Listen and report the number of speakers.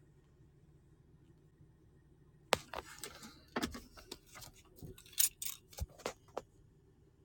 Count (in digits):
0